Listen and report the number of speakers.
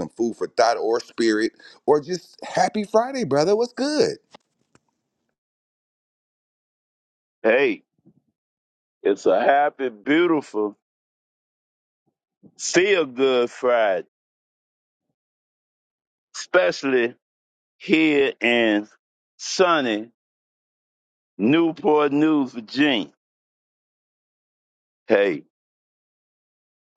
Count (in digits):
2